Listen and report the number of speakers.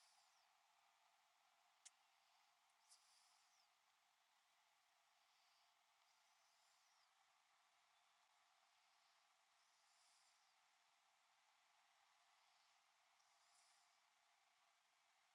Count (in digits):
0